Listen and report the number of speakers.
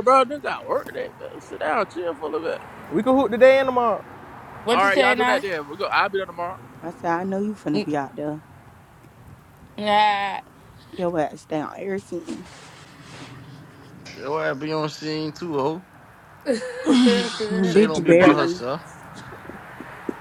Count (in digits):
5